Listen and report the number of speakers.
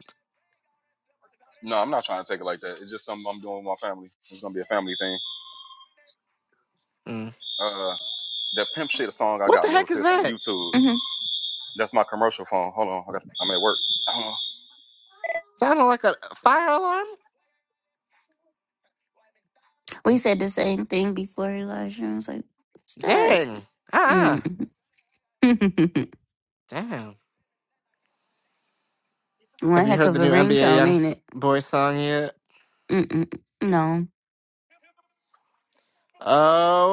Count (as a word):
three